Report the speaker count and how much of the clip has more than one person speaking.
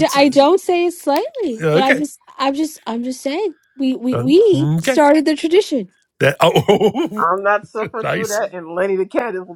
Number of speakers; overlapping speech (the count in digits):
3, about 19%